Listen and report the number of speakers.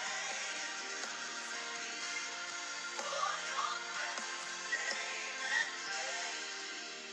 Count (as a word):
zero